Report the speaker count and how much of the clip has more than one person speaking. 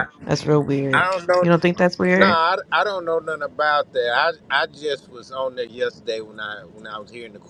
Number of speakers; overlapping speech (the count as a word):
two, about 9%